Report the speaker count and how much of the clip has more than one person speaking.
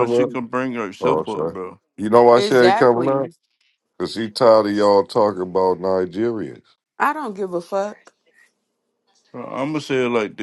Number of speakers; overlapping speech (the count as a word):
three, about 17%